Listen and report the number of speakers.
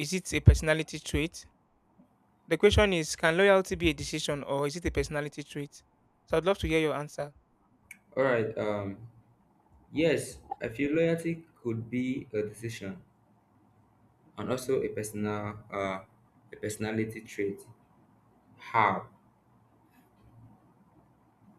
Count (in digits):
2